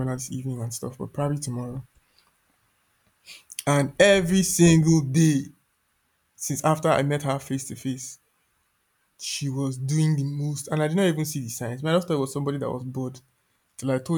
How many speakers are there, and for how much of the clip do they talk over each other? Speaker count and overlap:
1, no overlap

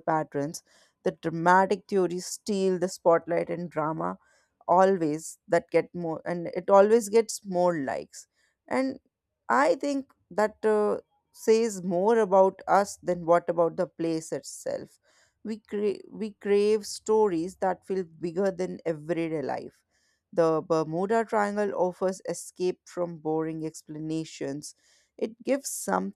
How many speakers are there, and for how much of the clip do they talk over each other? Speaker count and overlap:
1, no overlap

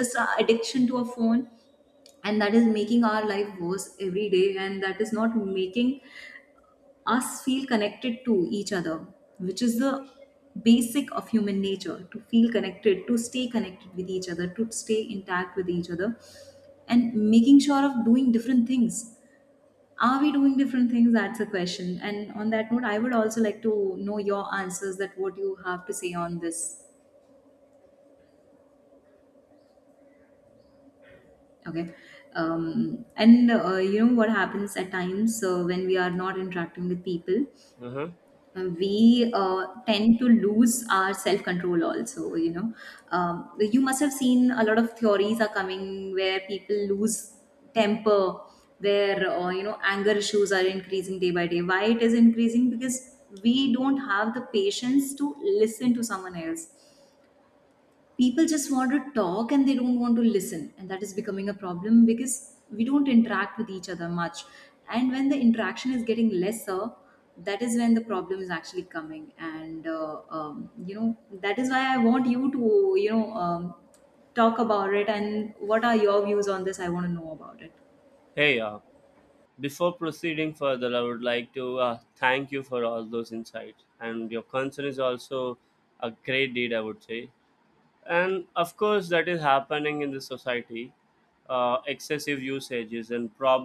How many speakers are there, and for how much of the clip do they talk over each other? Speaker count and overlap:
2, no overlap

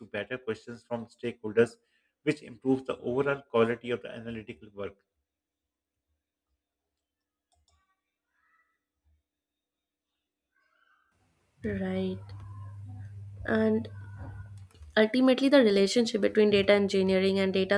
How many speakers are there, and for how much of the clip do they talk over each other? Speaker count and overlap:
2, no overlap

